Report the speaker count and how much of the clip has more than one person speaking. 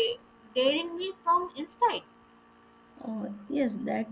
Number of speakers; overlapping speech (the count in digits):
2, no overlap